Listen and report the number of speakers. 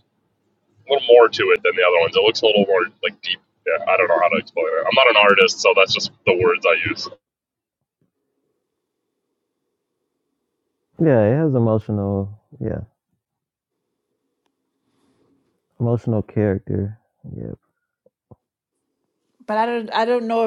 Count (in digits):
3